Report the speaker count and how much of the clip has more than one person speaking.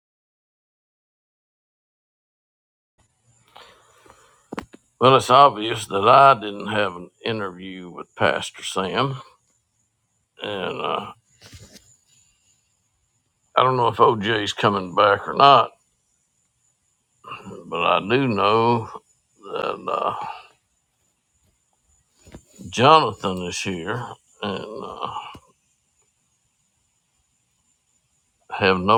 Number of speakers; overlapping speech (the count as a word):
one, no overlap